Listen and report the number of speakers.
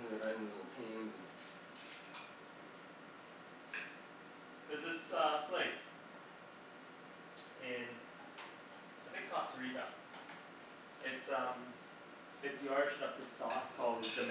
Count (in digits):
2